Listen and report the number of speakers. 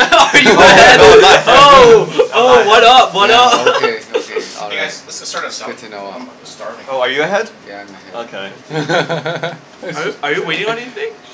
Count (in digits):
4